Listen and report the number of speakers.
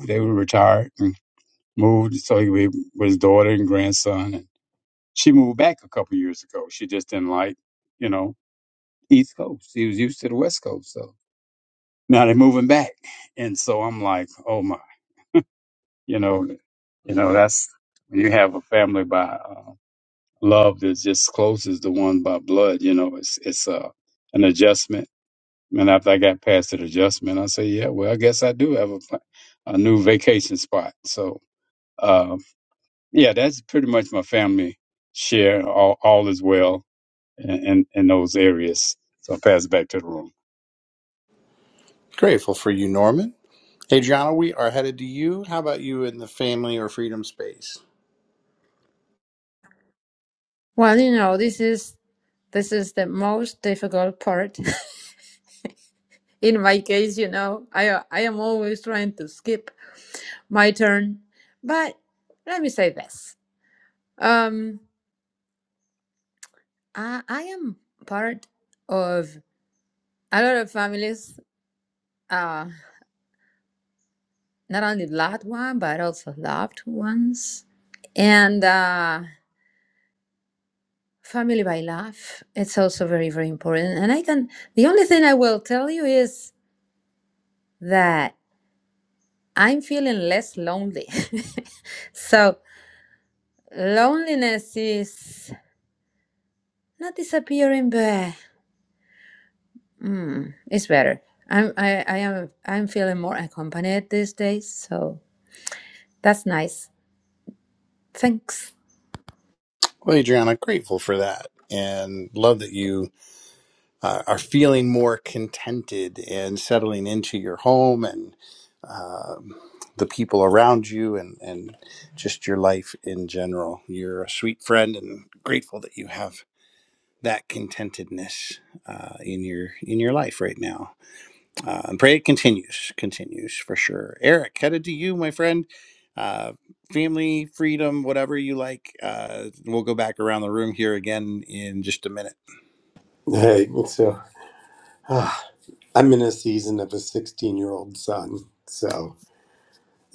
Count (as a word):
four